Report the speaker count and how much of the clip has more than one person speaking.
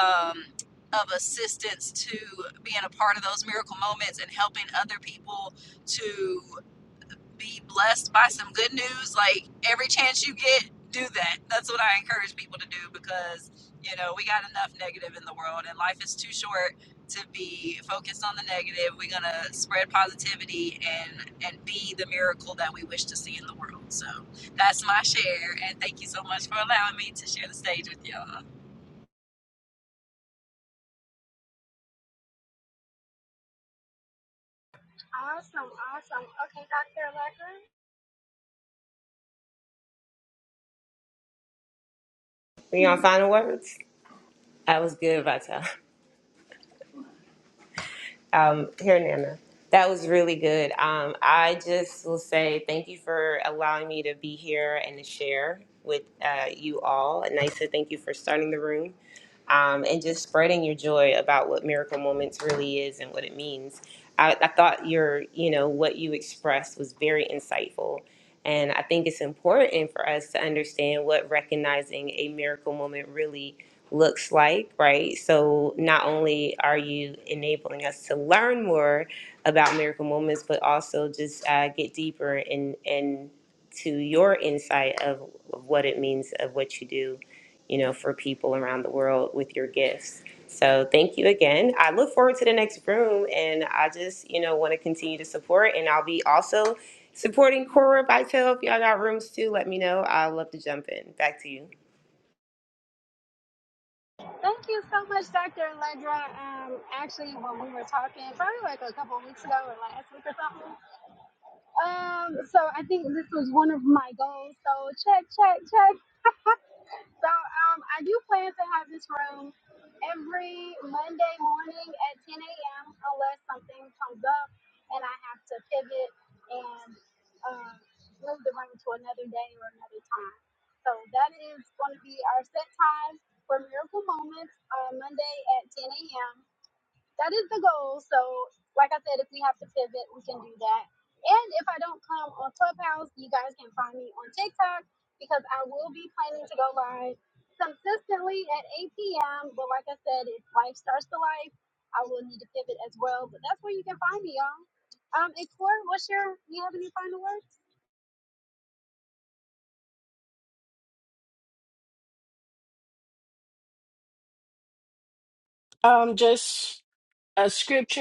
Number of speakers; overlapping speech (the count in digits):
4, no overlap